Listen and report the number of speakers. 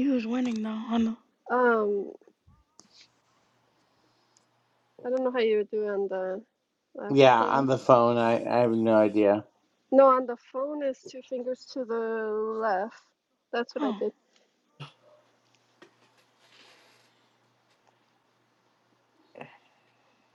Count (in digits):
3